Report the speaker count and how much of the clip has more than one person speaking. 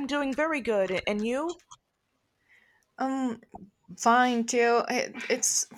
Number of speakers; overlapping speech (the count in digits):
2, no overlap